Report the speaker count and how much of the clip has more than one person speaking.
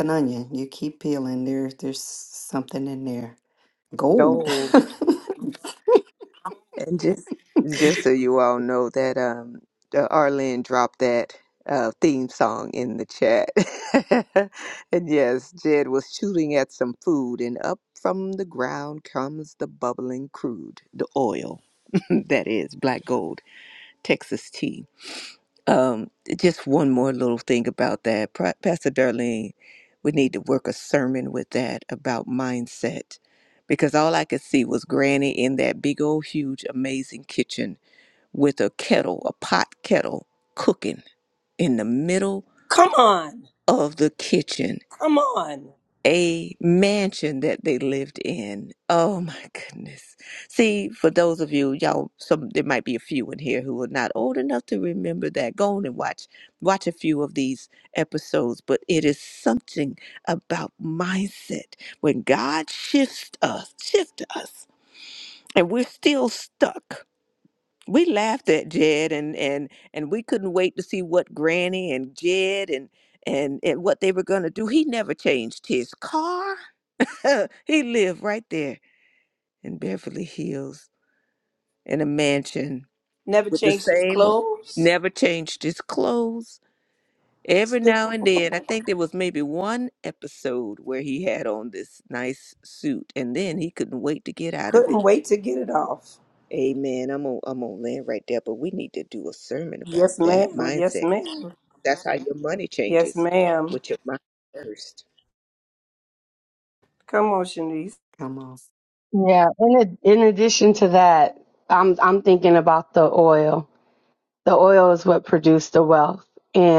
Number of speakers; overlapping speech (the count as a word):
four, about 3%